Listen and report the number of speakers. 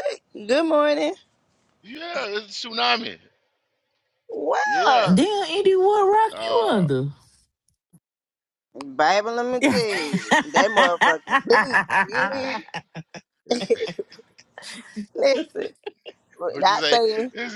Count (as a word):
three